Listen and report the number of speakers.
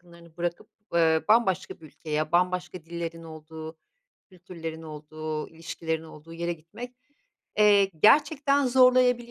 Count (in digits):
1